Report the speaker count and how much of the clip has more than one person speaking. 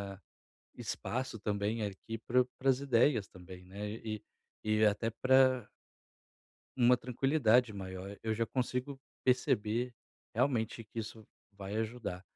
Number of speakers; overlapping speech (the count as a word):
one, no overlap